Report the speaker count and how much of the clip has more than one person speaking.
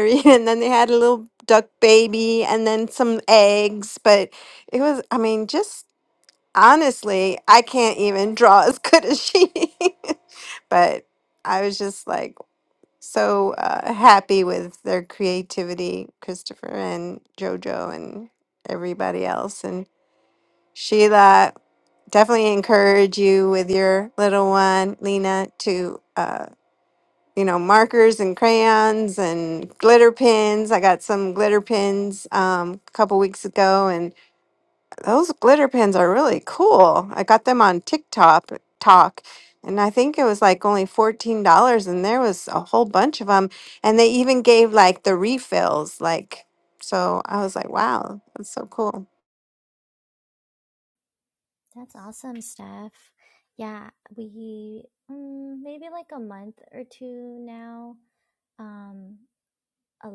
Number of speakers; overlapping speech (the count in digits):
2, no overlap